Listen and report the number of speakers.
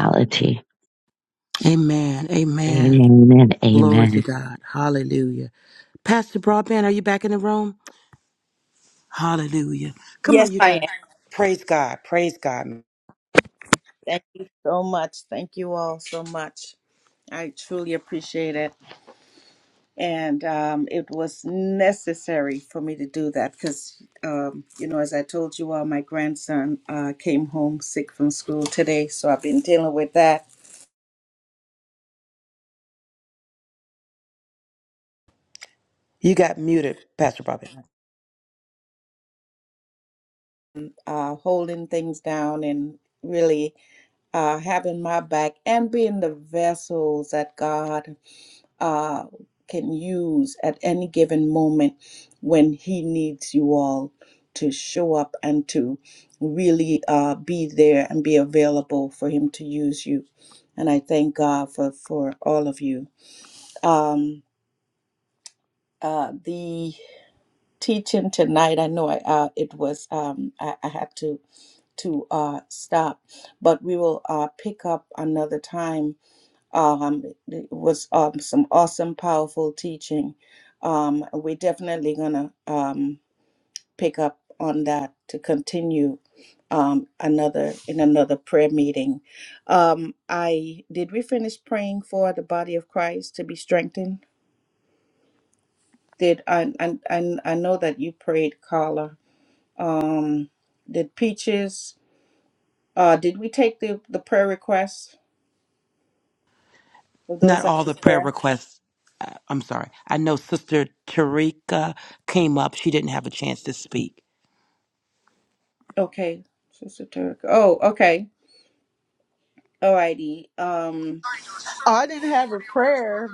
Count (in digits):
4